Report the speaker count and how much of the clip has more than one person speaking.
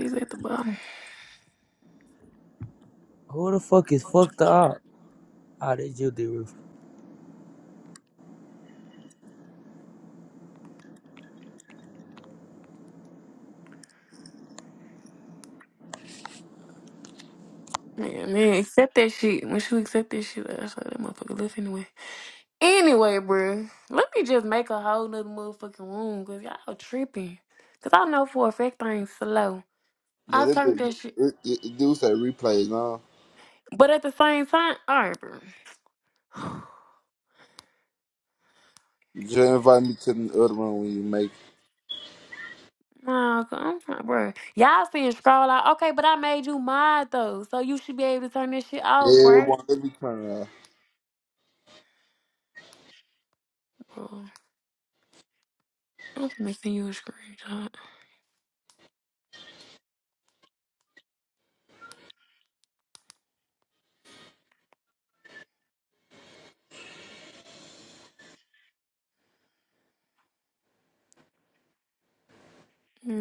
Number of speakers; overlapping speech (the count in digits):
3, about 2%